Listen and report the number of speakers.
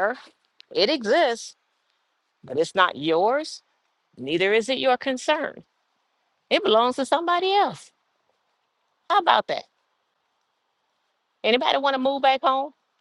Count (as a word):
one